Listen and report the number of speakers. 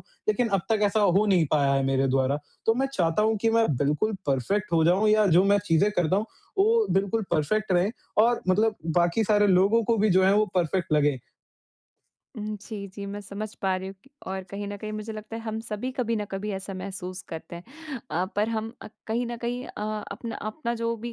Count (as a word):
two